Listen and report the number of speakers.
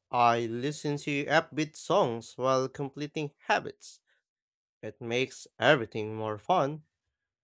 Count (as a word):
one